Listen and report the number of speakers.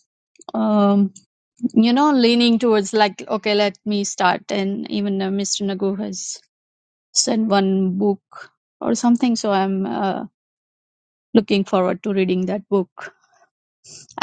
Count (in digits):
1